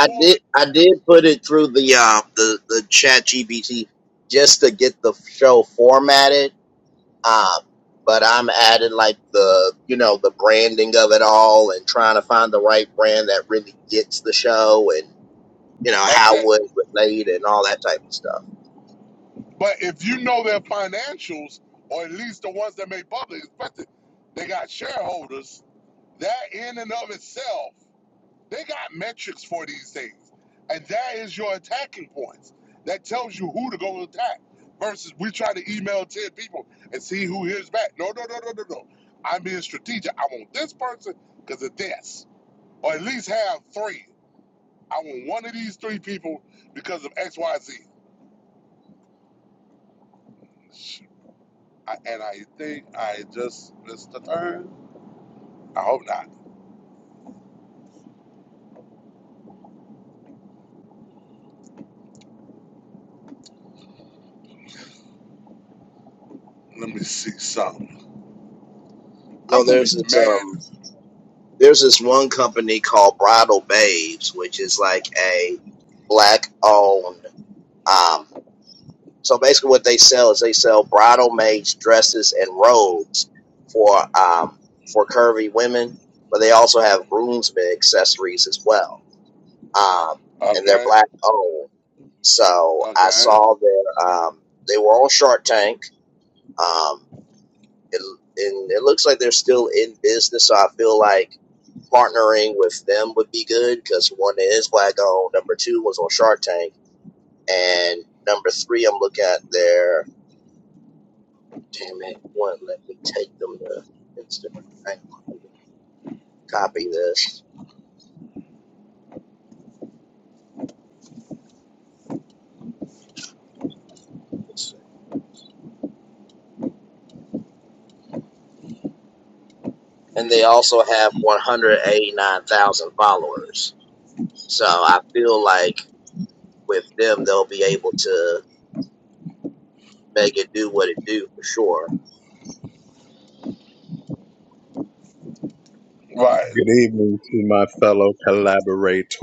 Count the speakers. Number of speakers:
three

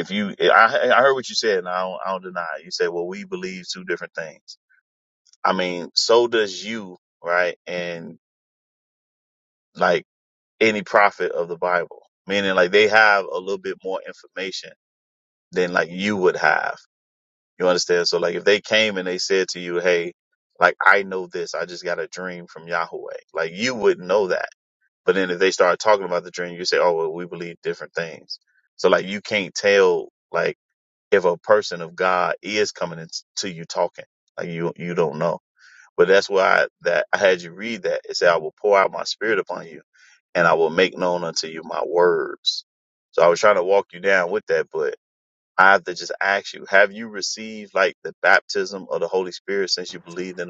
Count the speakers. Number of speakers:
one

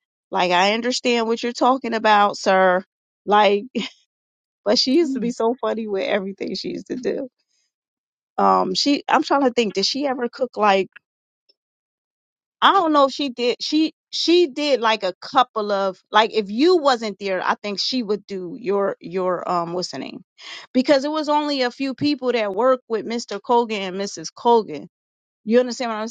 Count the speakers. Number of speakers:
one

